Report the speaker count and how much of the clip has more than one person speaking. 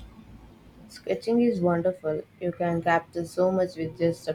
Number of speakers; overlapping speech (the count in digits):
1, no overlap